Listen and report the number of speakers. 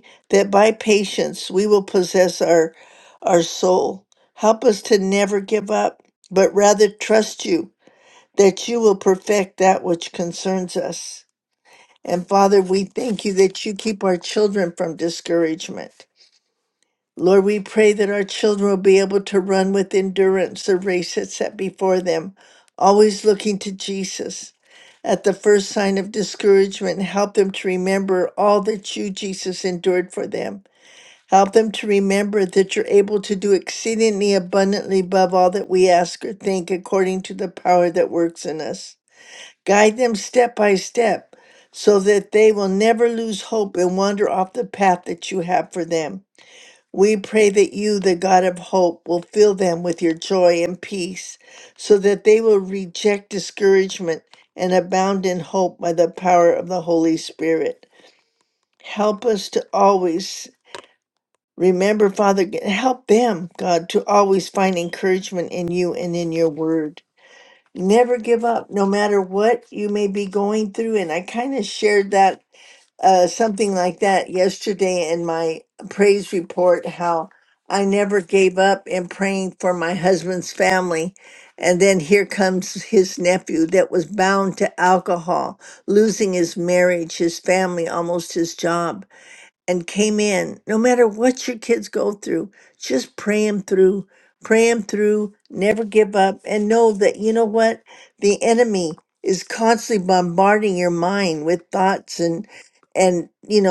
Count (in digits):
1